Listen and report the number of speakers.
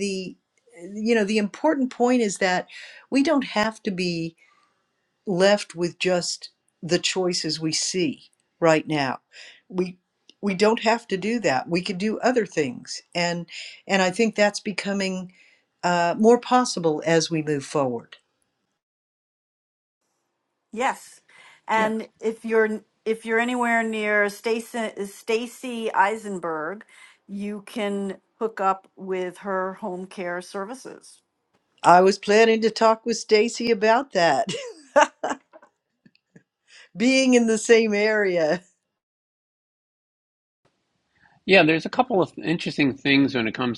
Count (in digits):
3